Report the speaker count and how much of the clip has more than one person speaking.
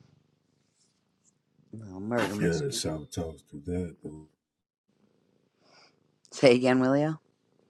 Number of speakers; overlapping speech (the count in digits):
2, about 5%